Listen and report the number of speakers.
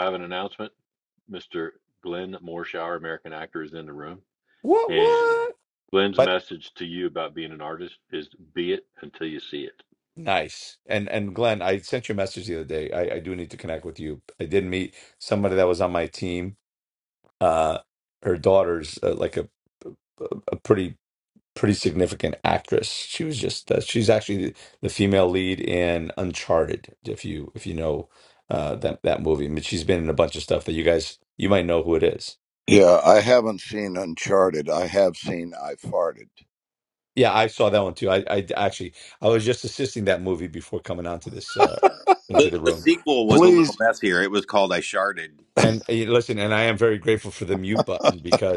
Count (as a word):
four